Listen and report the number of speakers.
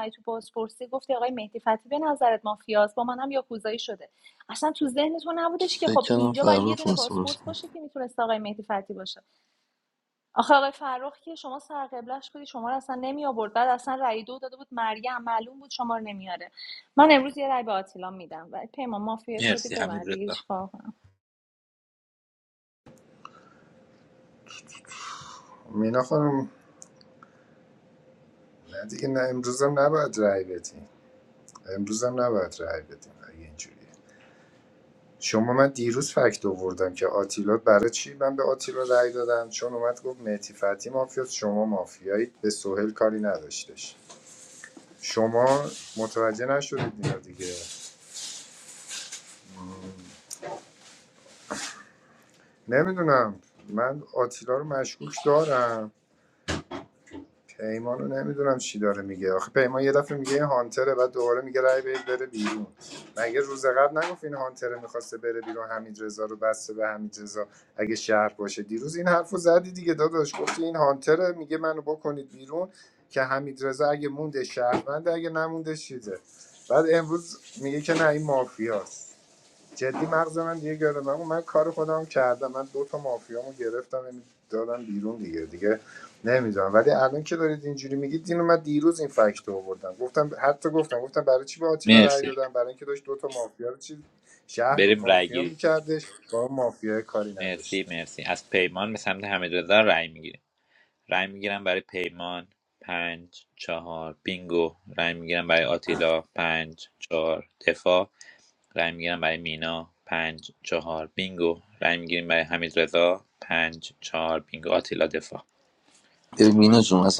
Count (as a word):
four